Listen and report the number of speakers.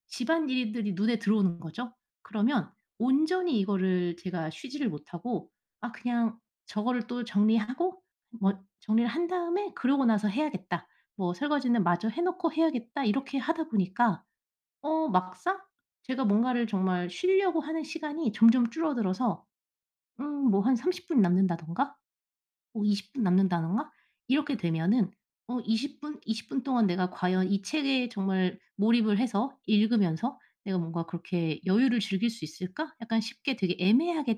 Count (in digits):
1